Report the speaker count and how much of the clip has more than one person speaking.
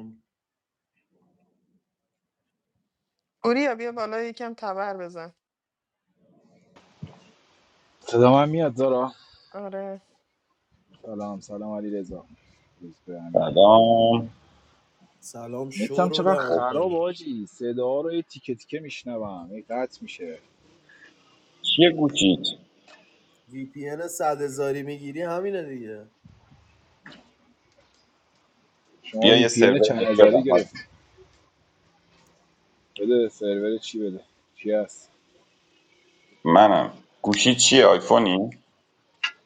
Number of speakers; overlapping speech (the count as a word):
four, about 7%